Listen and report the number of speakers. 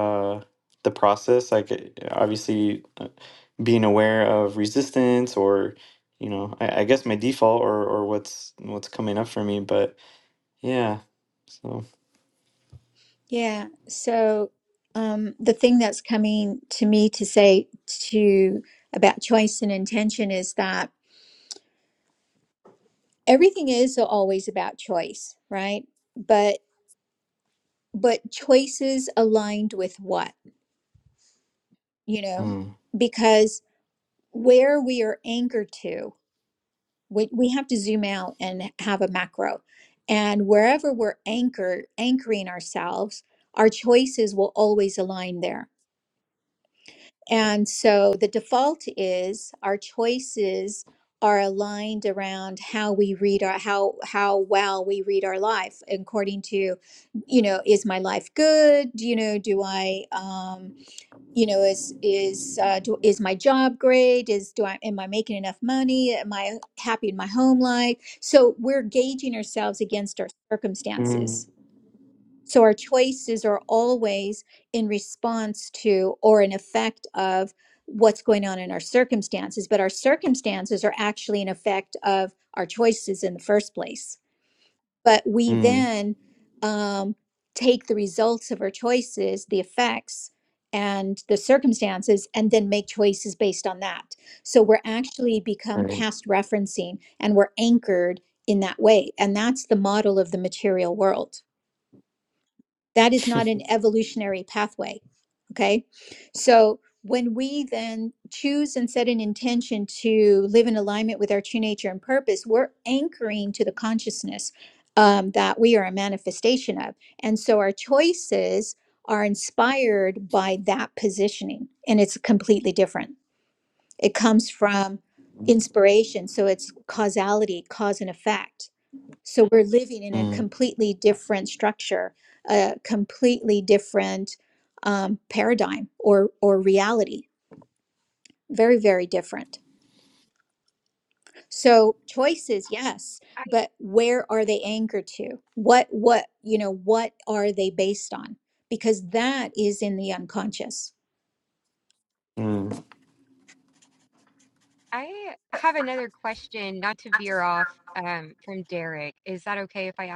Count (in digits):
3